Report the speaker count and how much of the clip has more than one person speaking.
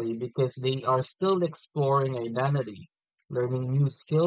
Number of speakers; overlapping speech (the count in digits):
1, no overlap